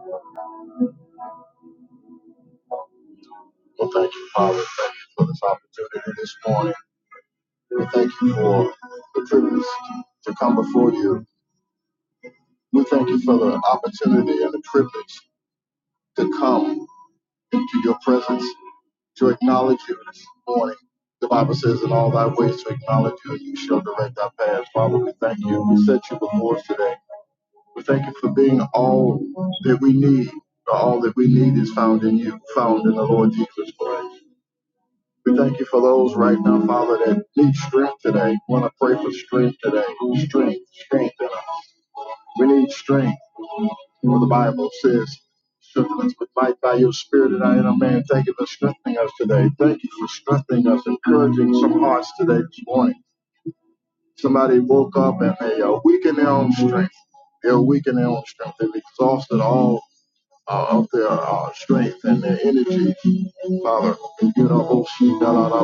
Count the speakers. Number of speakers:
1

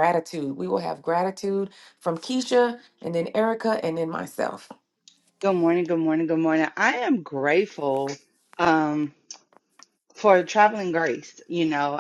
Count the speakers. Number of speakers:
2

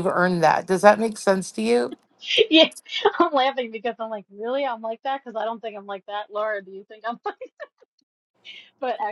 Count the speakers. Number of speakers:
2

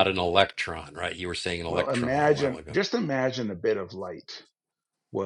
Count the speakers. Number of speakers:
2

